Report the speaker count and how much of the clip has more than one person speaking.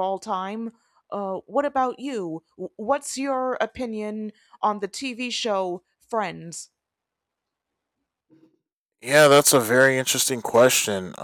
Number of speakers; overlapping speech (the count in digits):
2, no overlap